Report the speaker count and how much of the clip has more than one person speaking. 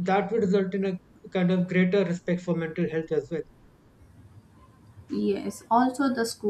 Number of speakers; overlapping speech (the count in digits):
2, no overlap